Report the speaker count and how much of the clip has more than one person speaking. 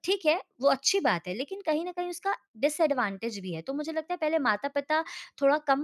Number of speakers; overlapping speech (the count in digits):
1, no overlap